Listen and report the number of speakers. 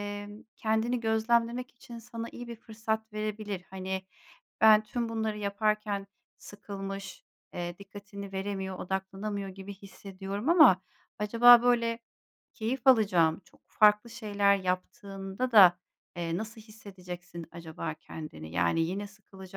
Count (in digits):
1